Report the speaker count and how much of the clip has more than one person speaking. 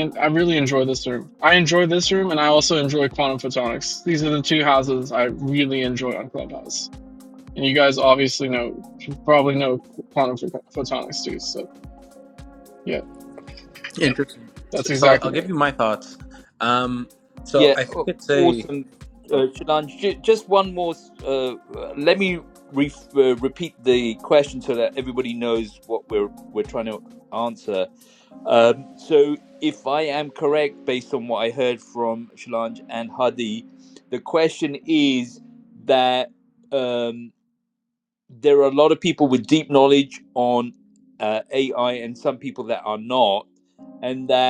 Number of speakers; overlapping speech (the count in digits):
3, about 4%